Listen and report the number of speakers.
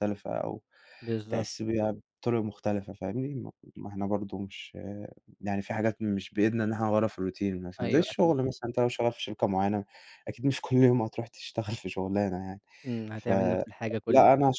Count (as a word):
two